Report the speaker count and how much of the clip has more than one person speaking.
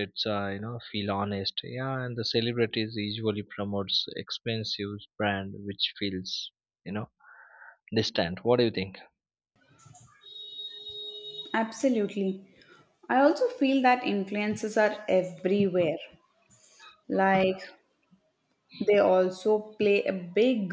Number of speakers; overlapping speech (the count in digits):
2, no overlap